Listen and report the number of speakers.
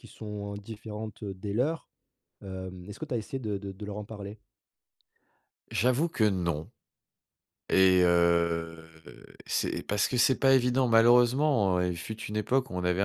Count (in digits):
2